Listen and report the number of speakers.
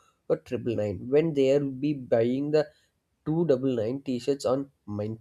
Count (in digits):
1